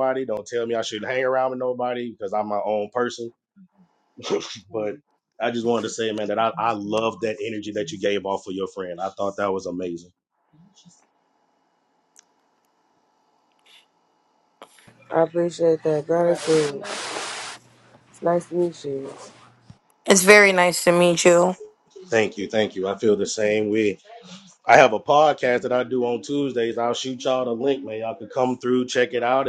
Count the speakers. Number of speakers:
three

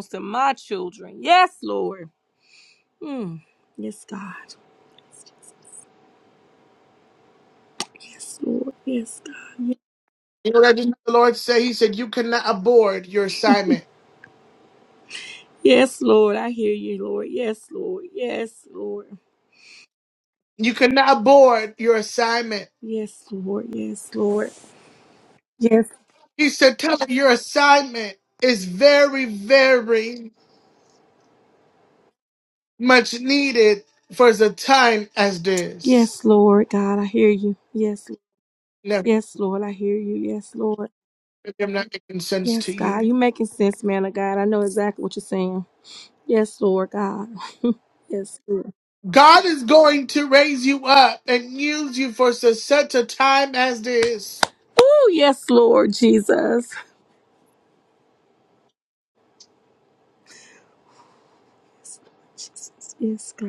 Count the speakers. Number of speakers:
two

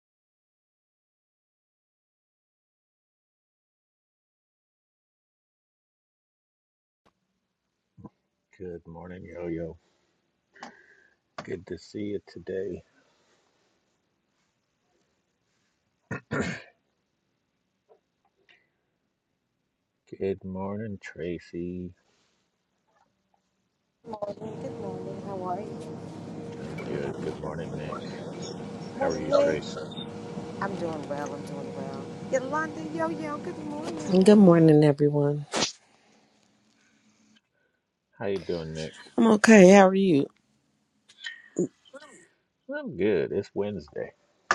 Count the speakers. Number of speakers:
three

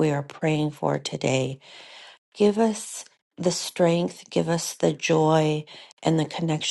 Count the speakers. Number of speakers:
one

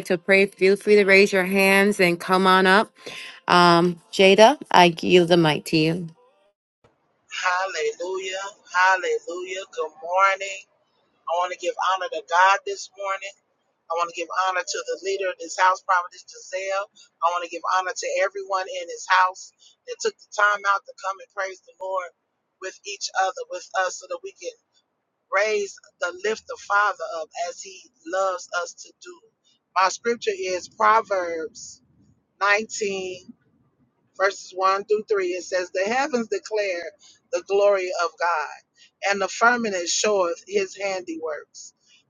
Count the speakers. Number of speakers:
two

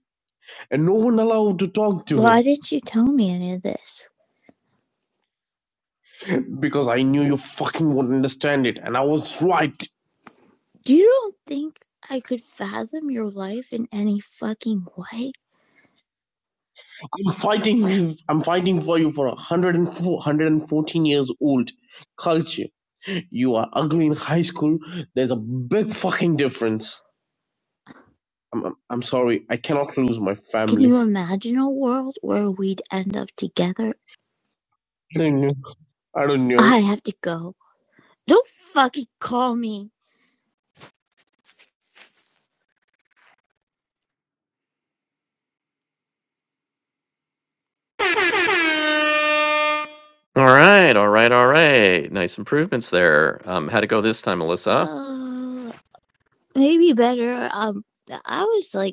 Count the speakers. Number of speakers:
three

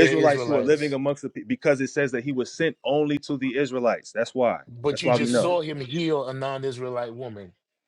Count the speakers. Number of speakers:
two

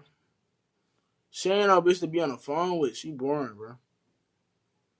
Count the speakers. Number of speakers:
one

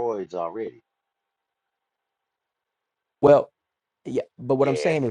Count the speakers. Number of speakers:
two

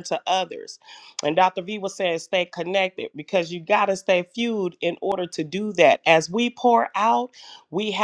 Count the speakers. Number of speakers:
one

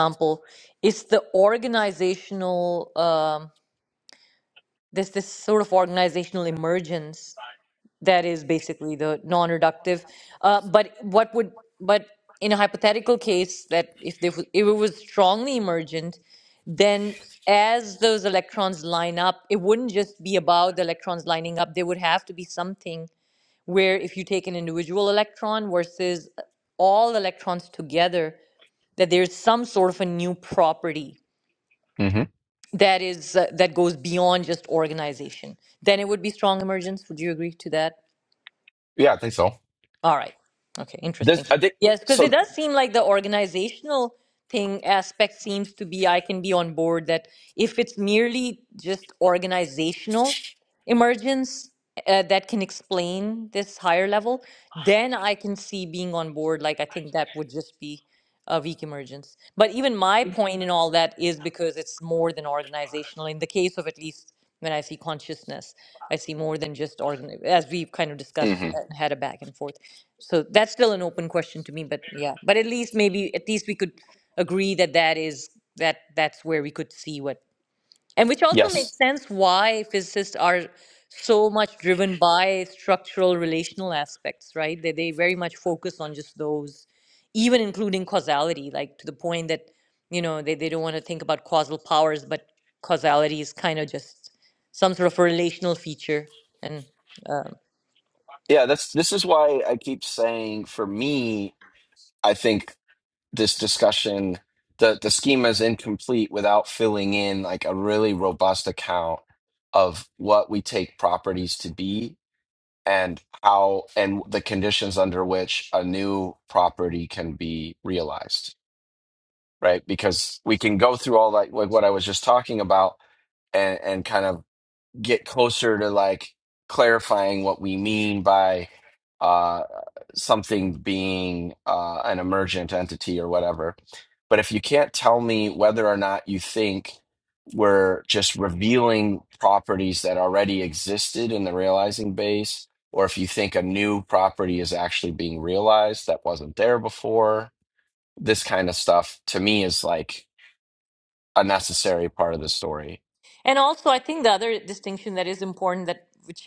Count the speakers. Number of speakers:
two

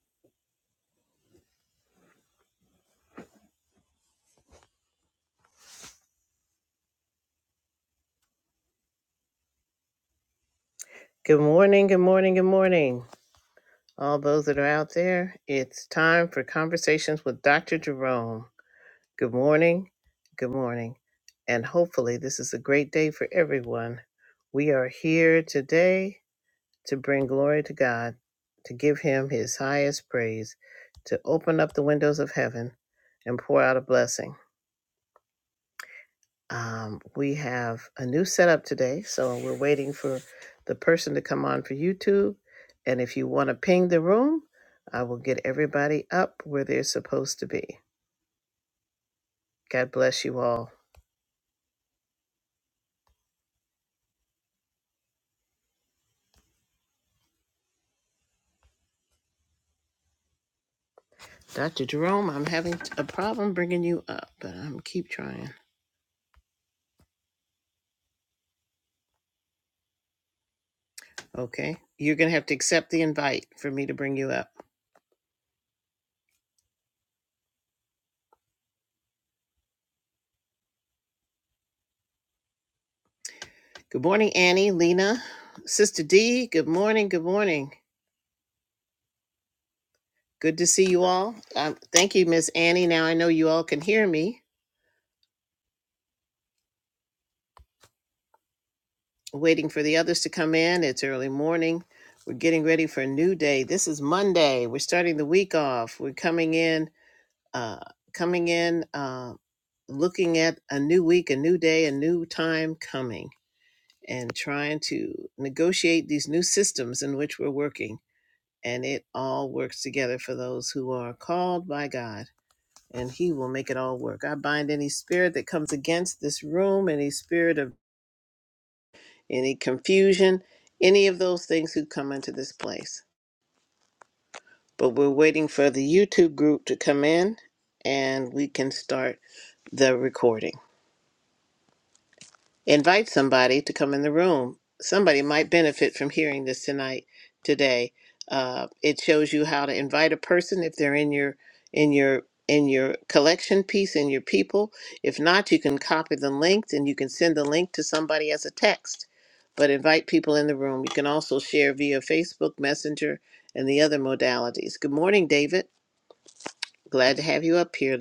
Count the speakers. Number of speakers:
one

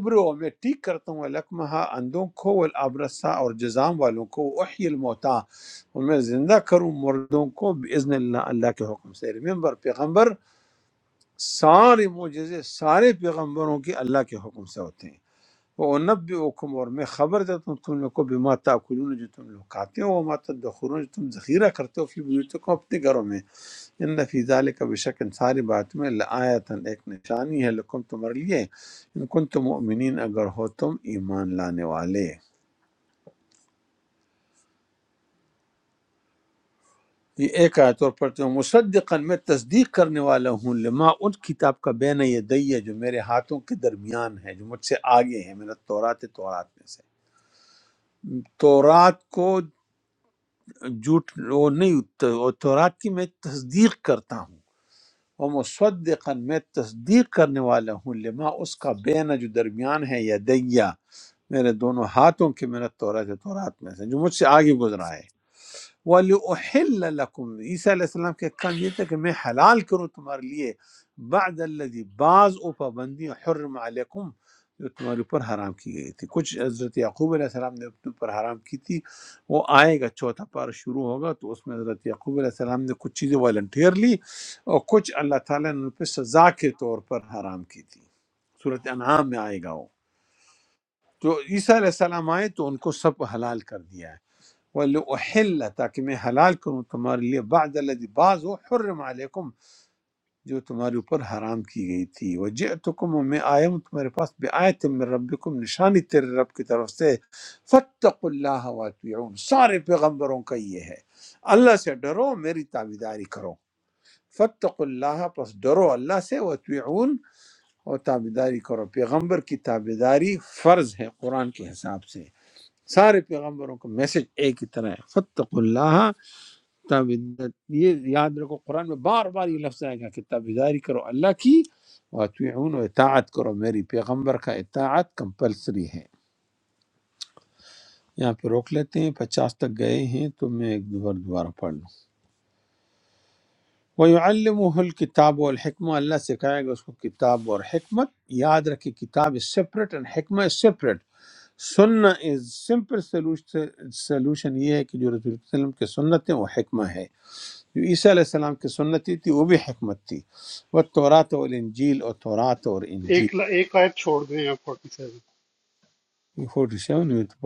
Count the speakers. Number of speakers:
two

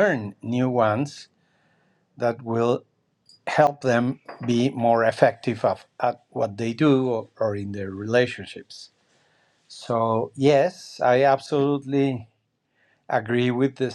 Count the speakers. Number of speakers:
one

